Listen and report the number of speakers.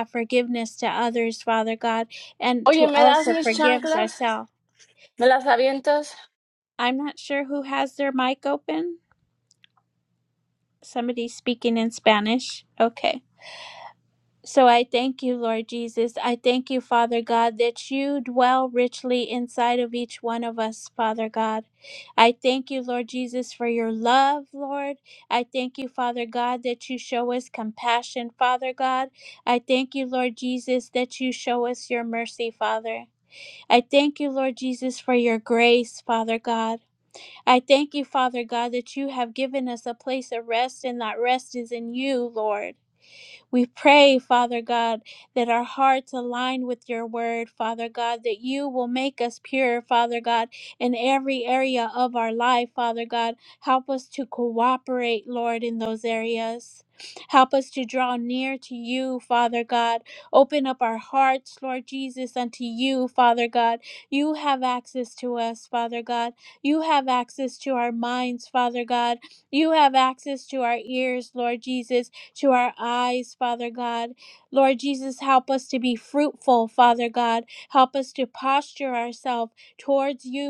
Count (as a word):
two